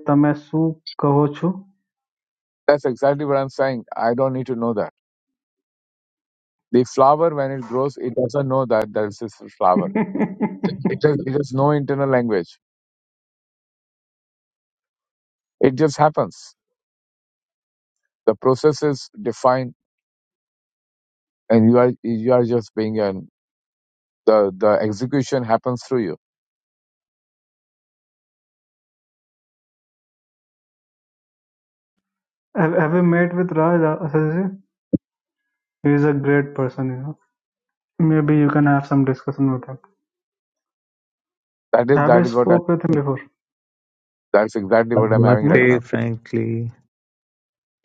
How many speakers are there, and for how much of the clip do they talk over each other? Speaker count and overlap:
3, about 4%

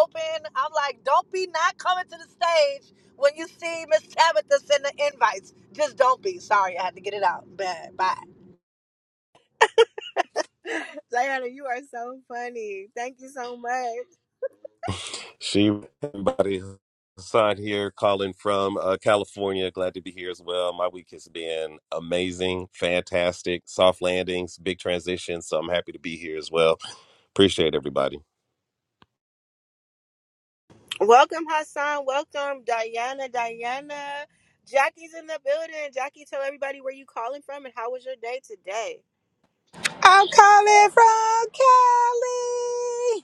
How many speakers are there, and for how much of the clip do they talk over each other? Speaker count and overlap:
4, no overlap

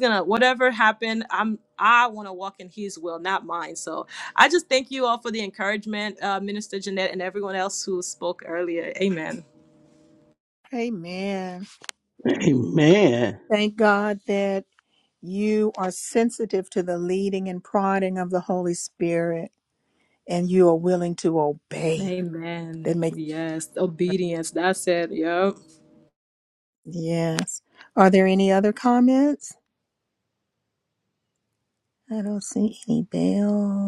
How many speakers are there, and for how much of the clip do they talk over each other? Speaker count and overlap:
3, about 1%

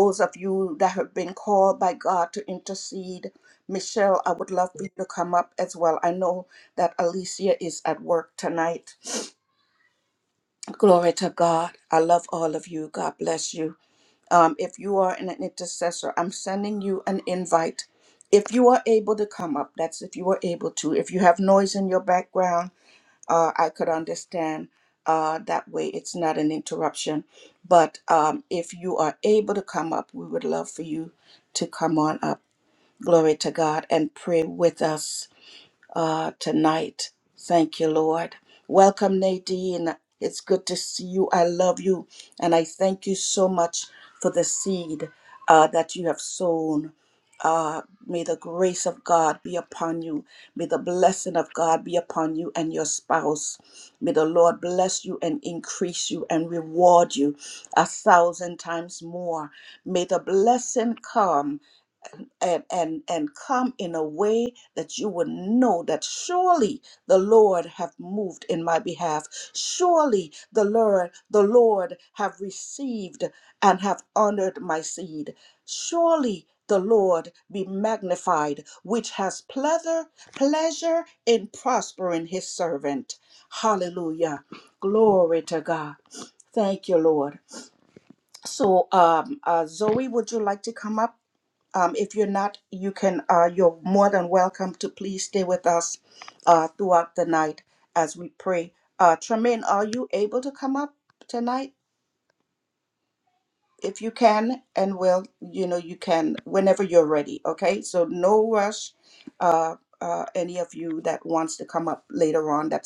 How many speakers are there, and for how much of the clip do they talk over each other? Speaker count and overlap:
1, no overlap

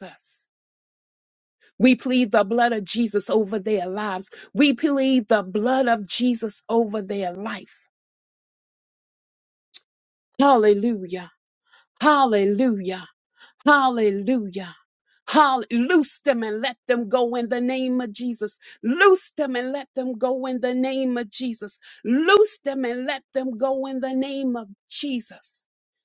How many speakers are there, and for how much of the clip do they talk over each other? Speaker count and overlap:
1, no overlap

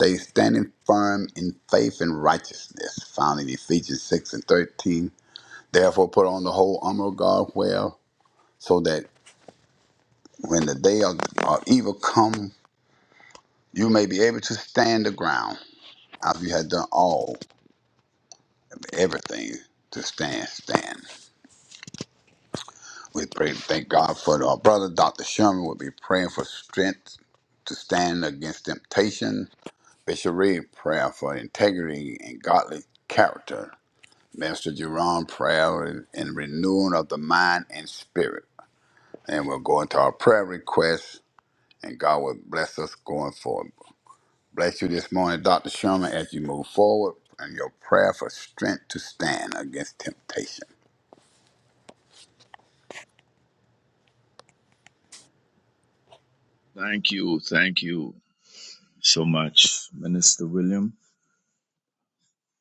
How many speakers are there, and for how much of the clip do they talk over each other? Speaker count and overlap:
2, no overlap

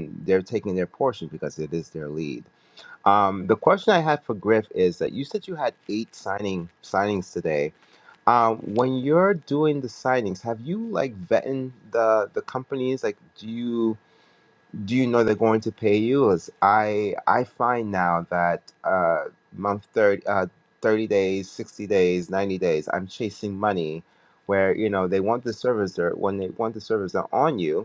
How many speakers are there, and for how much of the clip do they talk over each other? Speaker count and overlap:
1, no overlap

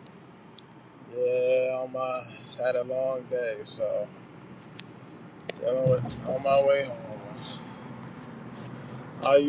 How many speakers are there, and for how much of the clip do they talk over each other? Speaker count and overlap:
1, no overlap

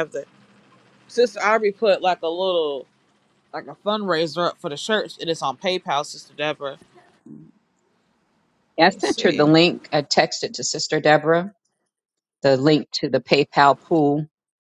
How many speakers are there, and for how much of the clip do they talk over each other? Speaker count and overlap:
2, about 4%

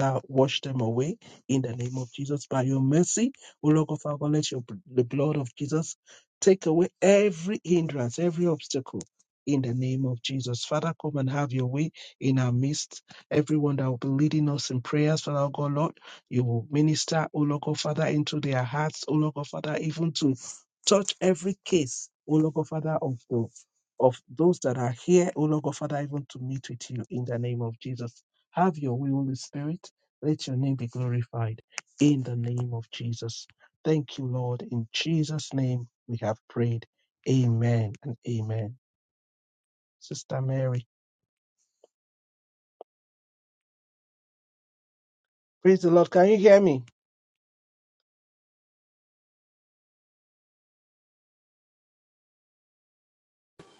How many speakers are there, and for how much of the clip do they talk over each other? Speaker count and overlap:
1, no overlap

